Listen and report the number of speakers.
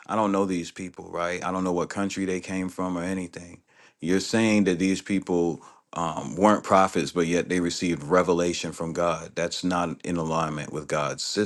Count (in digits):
1